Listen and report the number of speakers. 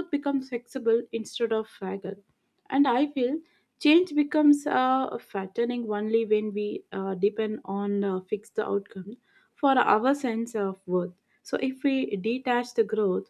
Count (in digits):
1